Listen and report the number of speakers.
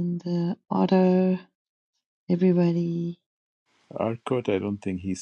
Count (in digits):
2